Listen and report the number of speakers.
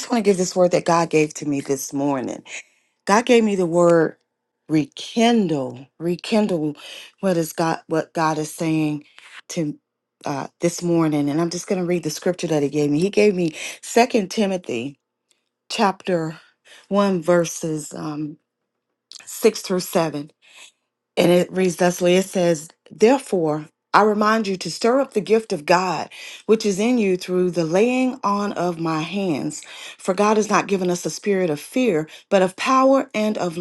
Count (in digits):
1